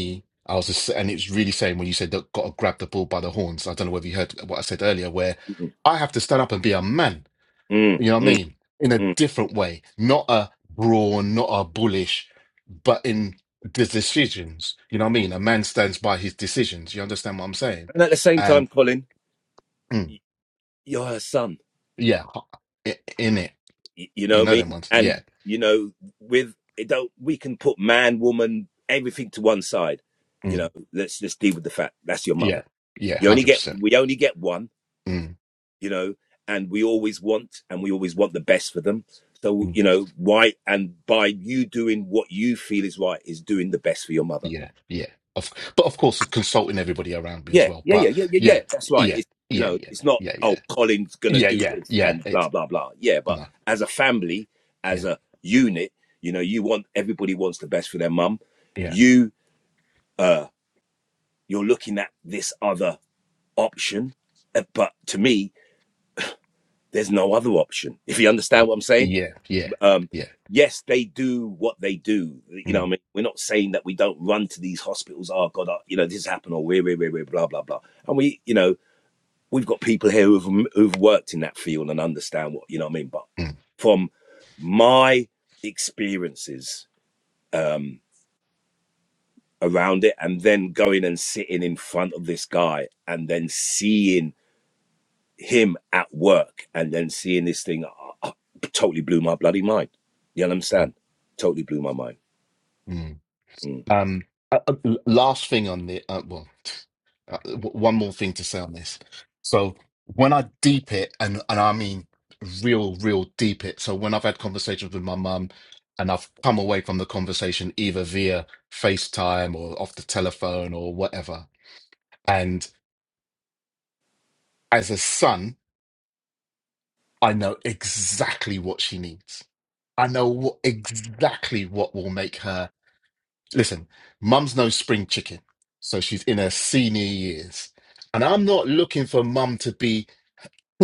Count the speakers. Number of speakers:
two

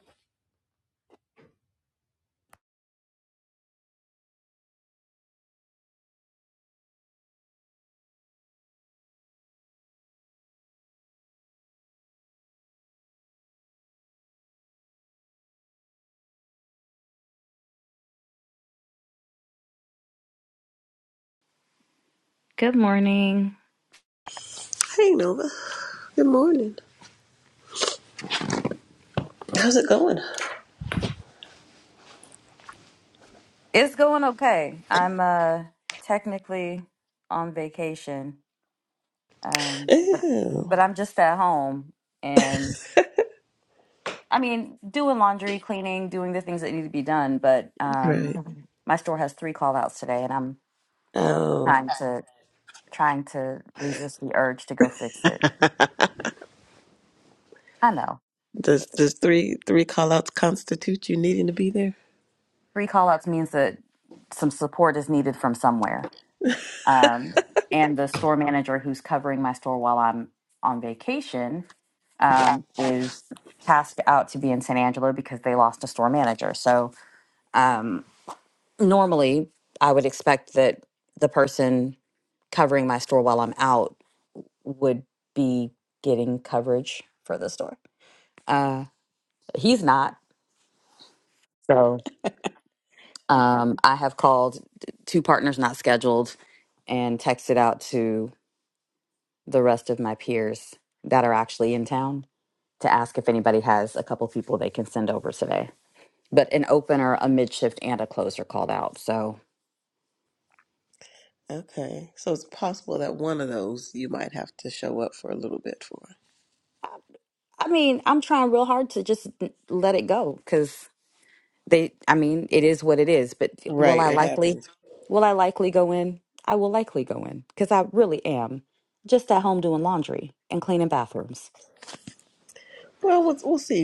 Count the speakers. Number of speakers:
two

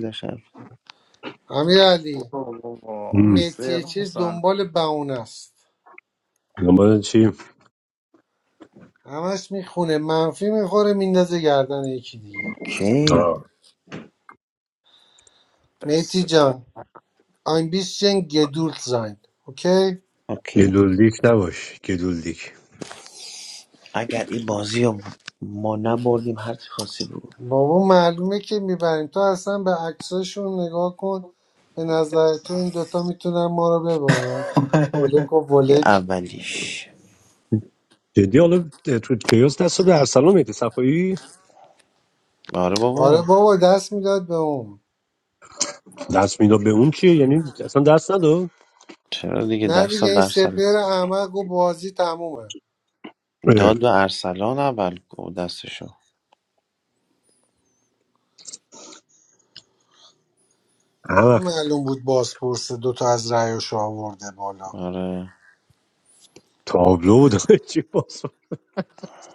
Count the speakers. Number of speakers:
four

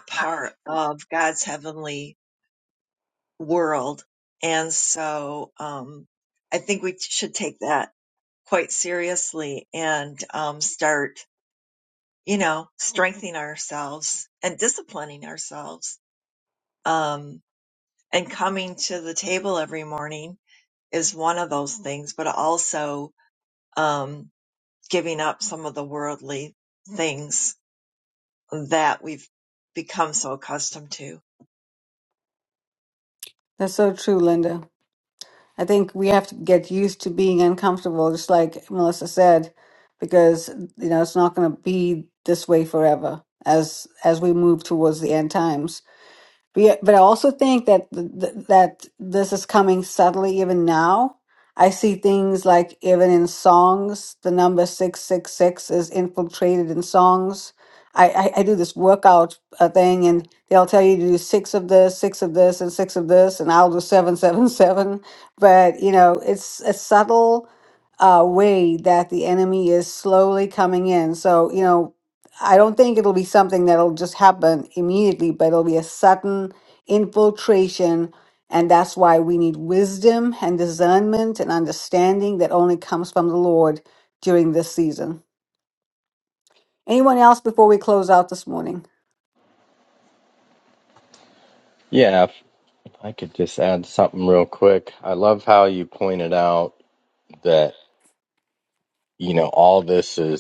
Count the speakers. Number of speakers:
three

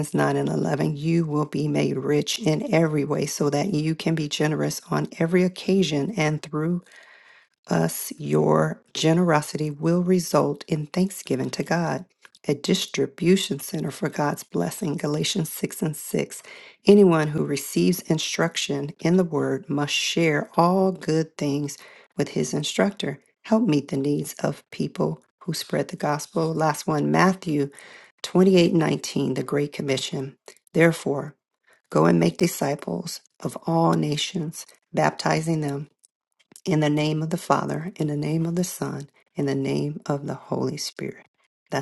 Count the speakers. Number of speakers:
one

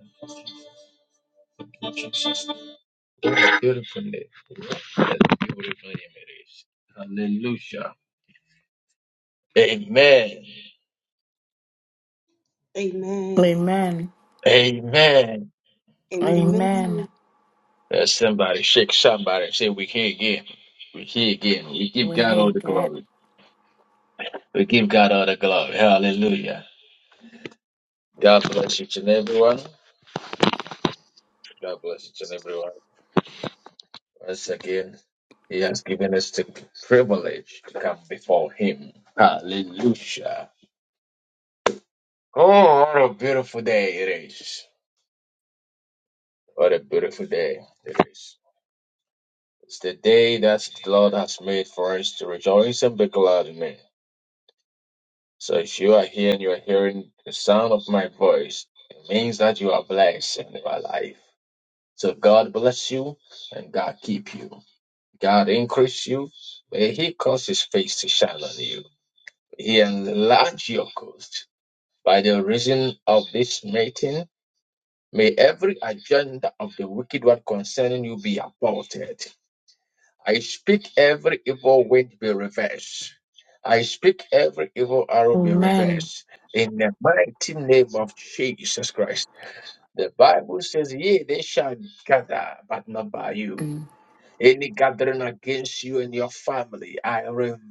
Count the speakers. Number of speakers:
three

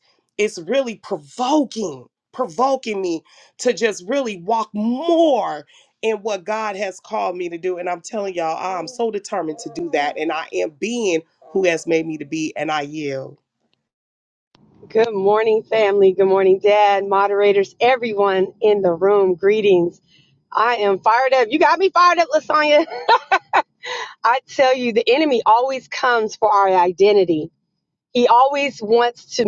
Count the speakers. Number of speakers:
two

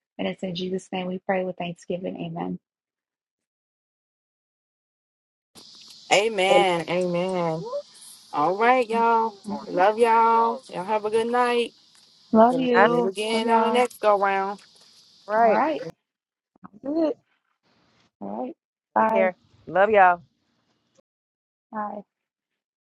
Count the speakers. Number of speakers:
three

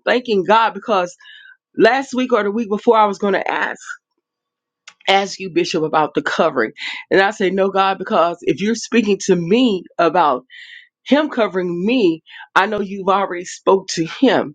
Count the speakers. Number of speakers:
one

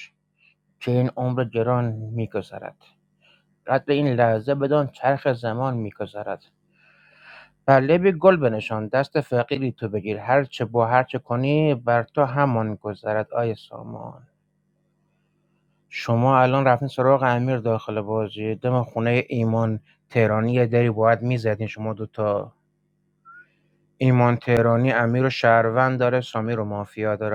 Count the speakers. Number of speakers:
one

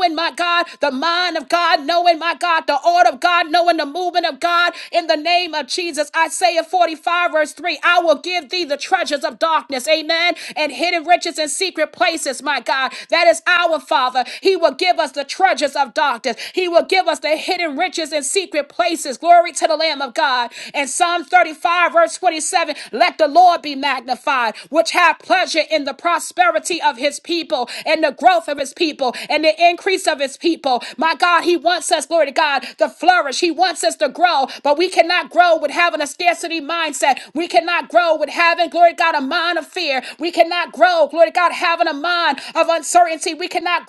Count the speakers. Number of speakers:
one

